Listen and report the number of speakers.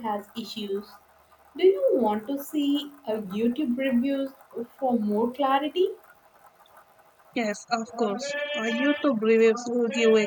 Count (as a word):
two